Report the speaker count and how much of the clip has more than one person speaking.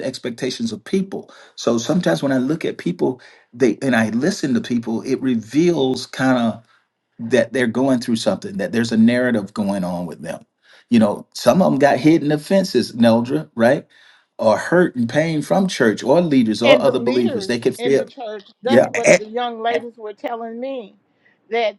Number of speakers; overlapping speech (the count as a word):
two, about 8%